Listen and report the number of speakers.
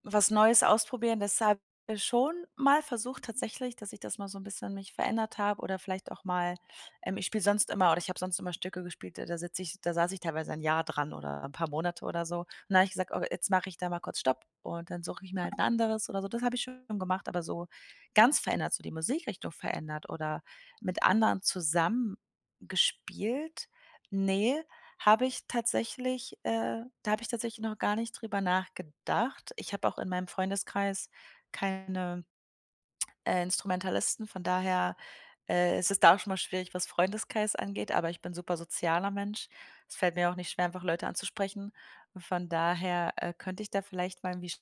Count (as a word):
one